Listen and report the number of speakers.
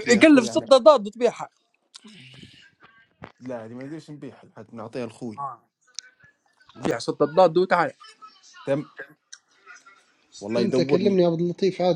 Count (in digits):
3